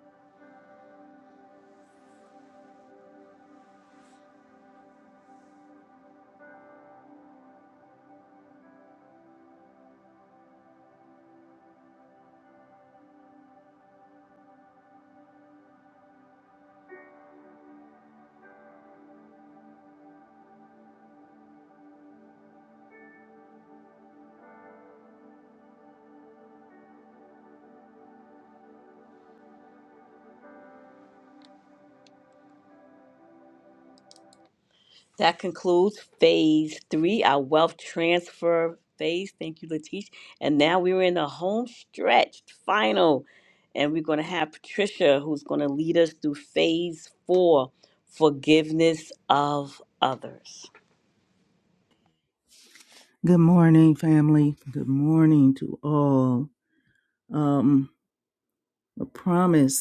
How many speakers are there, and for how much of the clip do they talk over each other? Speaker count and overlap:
two, no overlap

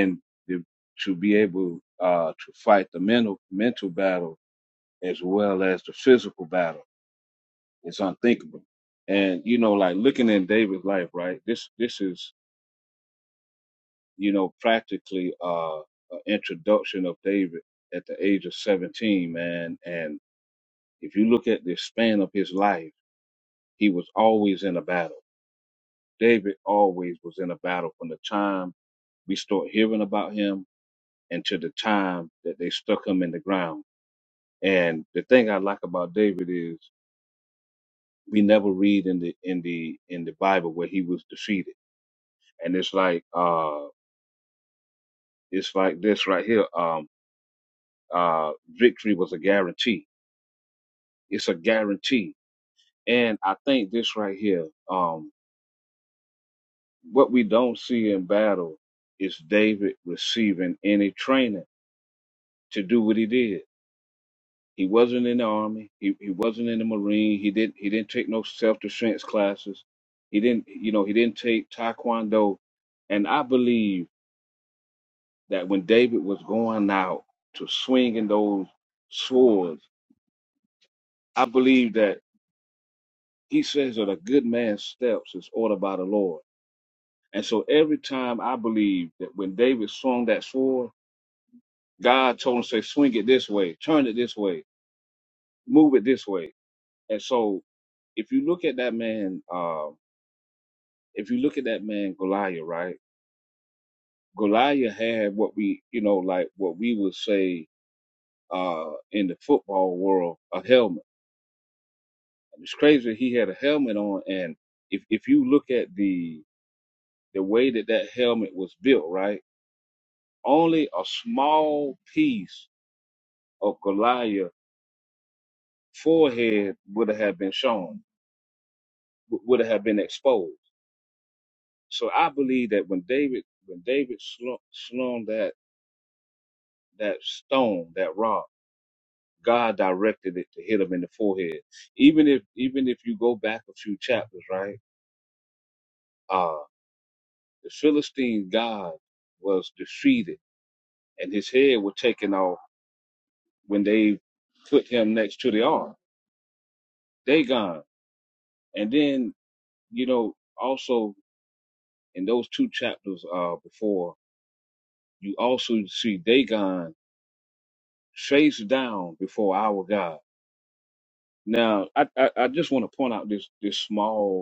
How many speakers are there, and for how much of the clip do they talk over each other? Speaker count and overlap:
one, no overlap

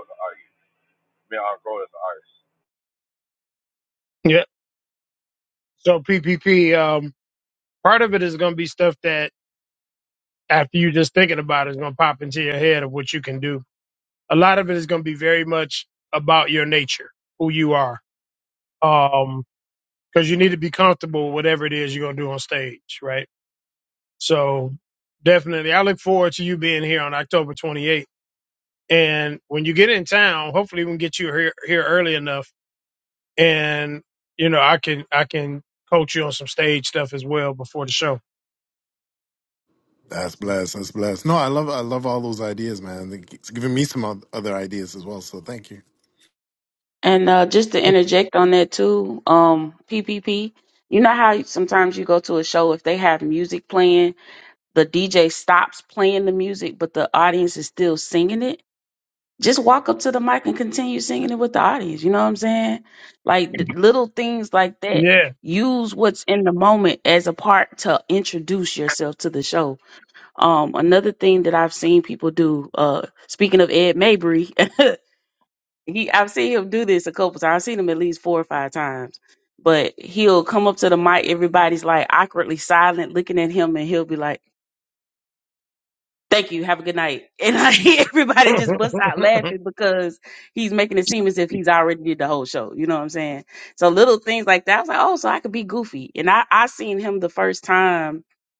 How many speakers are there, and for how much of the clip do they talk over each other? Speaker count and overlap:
four, under 1%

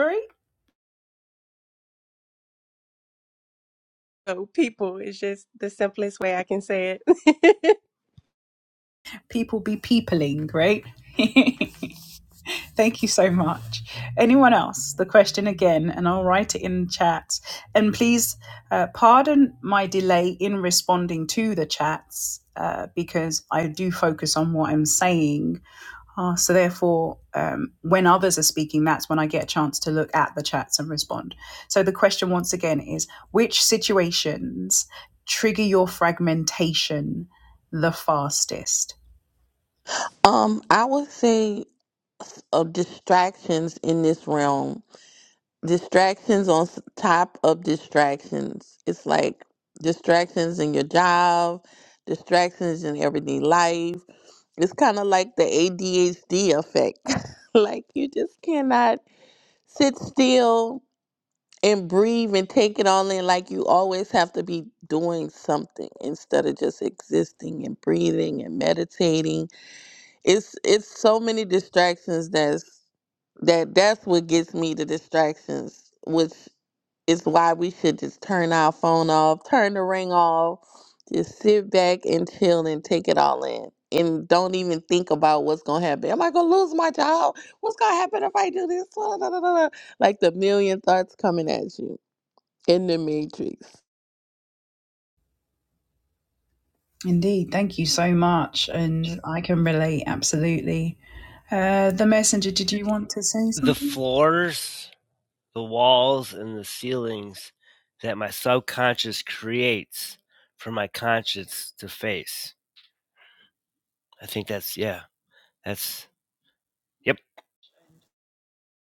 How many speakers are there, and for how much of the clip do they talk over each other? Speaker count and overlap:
four, under 1%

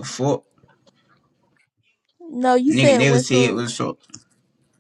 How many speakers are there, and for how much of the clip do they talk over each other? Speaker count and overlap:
two, about 18%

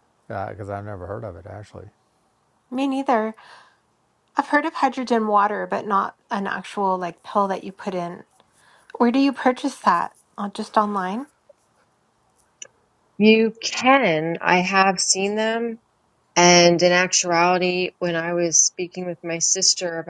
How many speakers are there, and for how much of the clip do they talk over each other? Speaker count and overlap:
three, no overlap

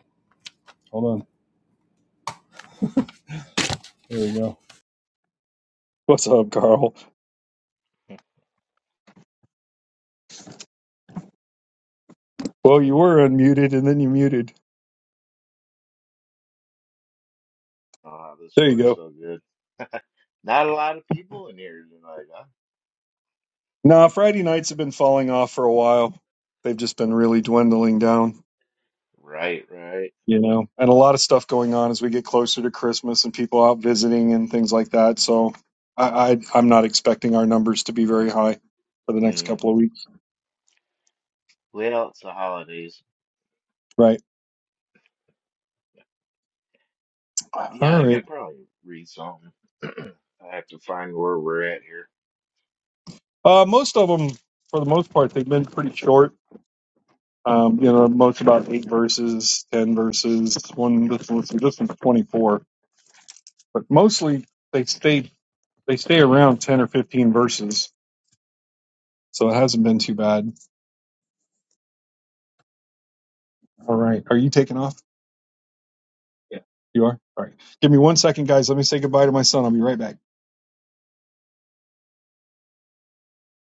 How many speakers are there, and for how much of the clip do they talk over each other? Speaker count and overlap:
two, about 2%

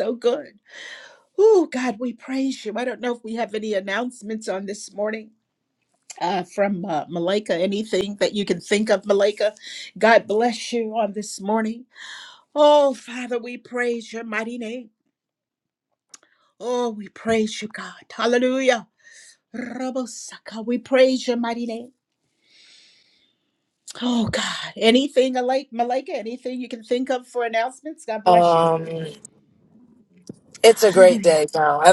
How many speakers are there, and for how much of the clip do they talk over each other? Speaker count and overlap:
two, about 4%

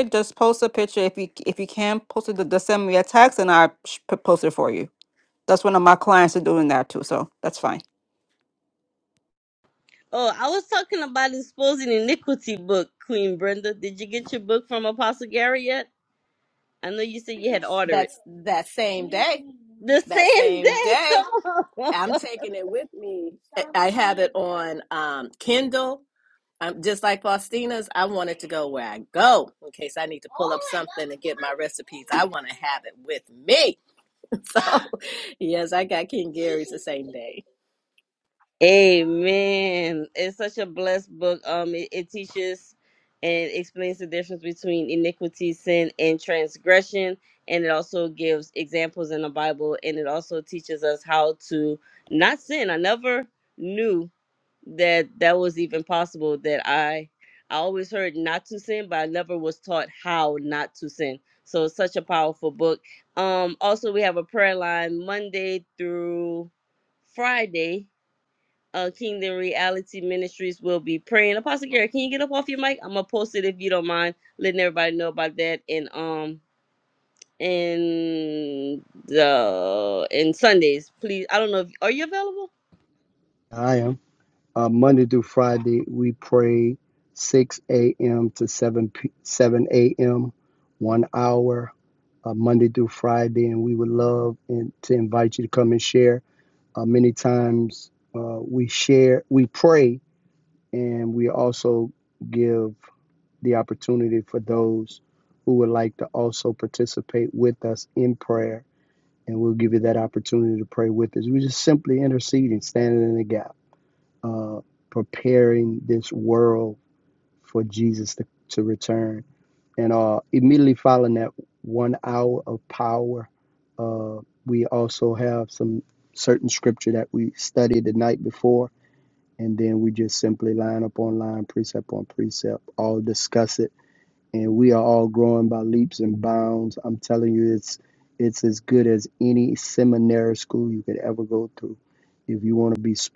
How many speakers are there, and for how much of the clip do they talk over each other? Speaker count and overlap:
four, about 1%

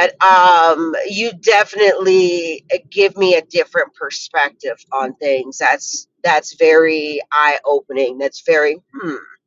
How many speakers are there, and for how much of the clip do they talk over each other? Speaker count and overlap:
one, no overlap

